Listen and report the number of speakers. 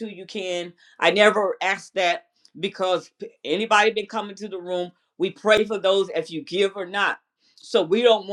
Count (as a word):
one